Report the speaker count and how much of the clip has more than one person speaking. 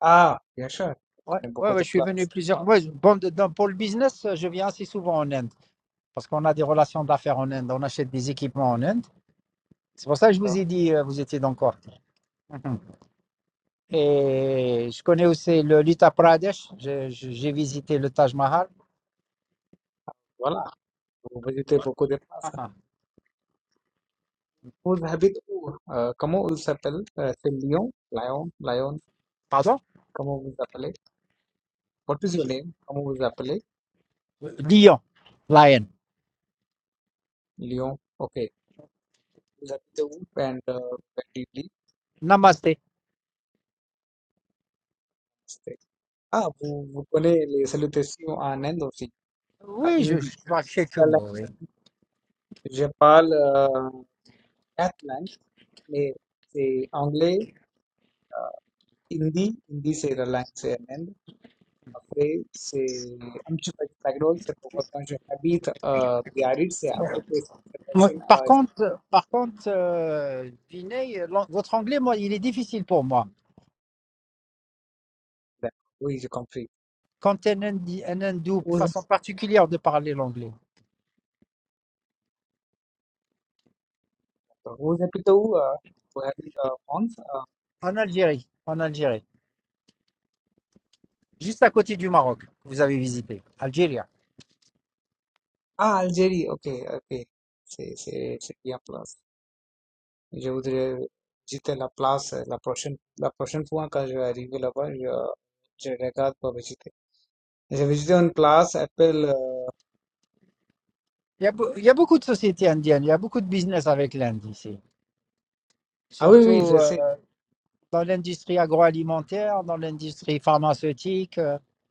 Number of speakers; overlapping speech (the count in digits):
2, about 3%